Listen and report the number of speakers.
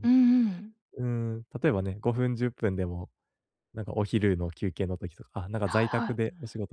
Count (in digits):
2